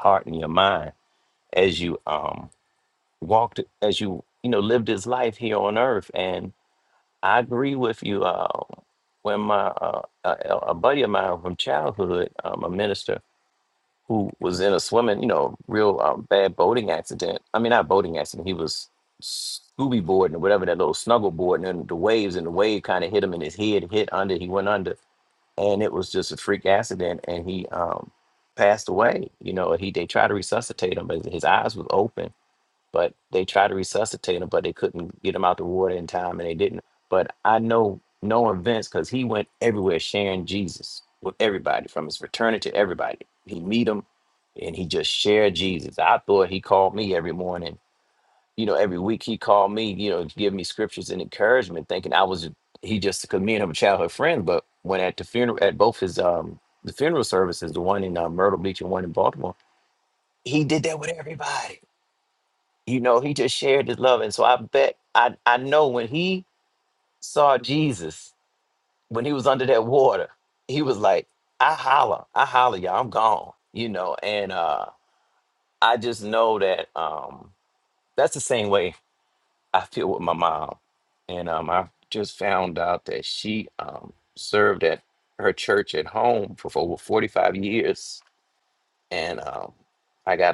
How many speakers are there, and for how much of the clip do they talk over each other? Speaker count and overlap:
1, no overlap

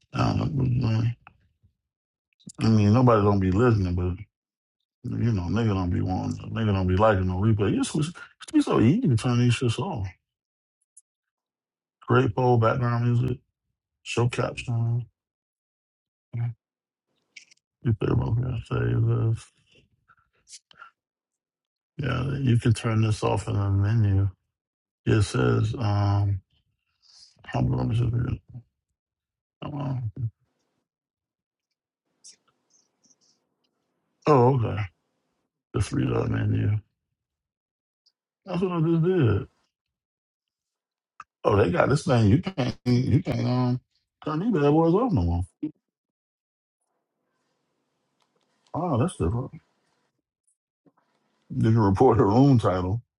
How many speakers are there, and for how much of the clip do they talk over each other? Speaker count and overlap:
1, no overlap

